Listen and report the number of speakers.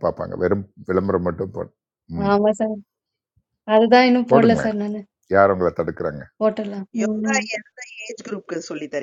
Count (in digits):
3